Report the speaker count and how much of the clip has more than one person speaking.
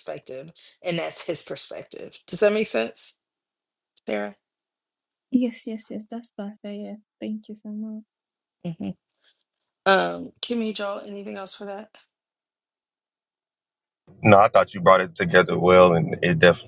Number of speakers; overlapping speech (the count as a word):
three, no overlap